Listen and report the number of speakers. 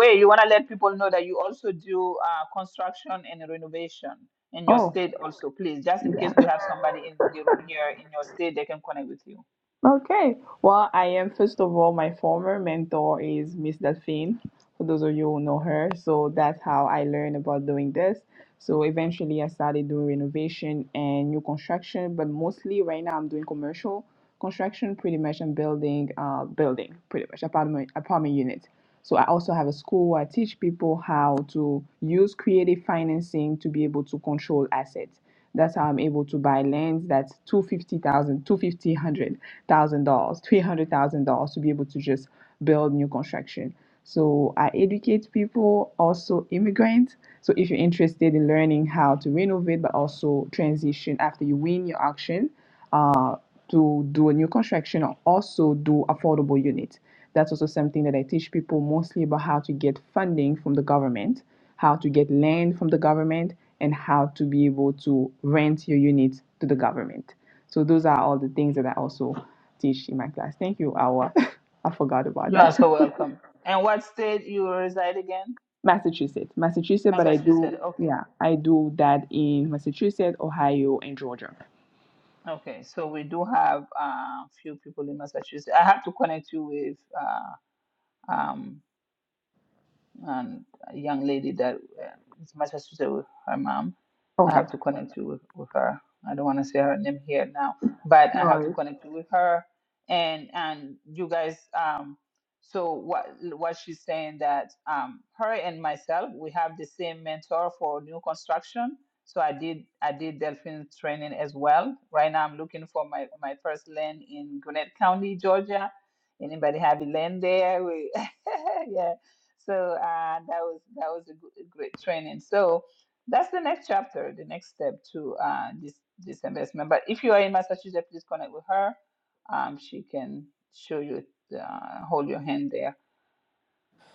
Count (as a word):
two